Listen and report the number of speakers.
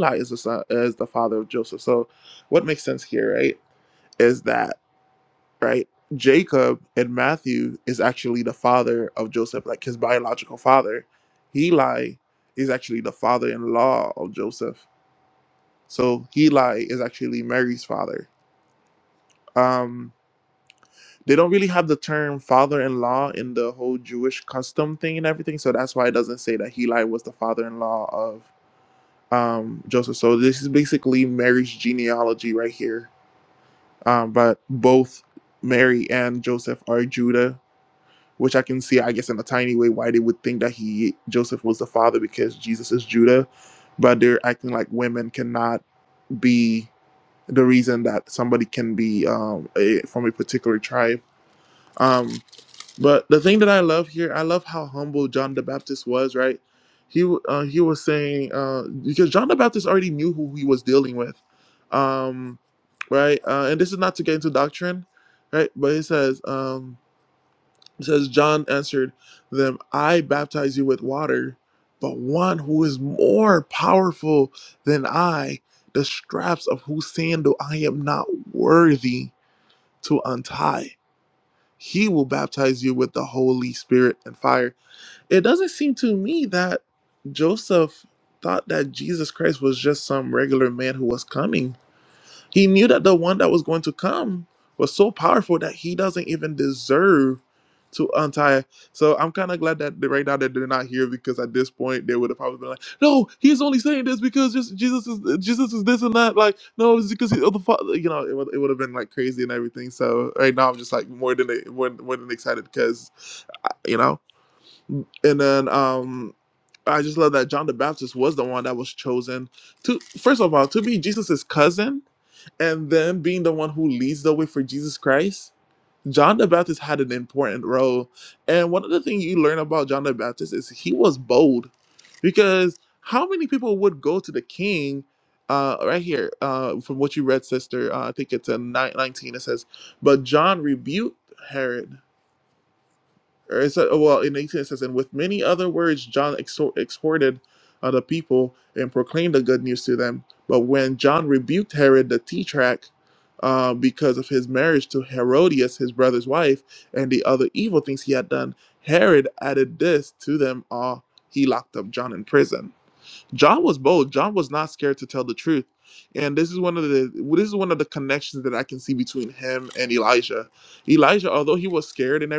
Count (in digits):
1